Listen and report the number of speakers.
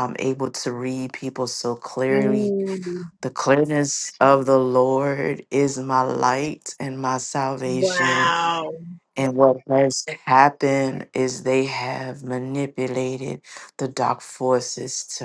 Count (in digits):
2